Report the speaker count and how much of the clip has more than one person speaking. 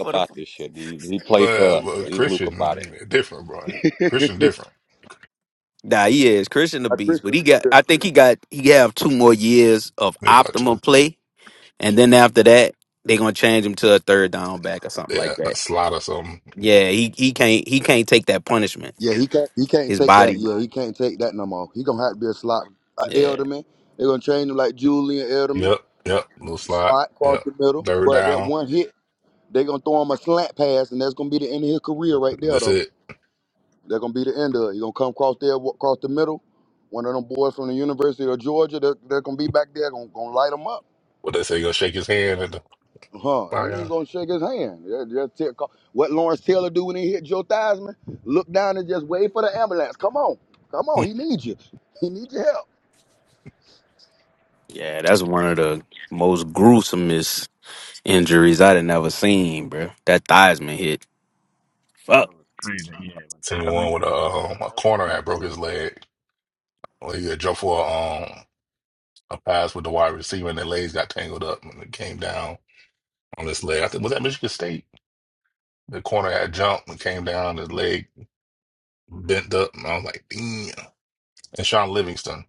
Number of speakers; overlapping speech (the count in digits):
5, about 10%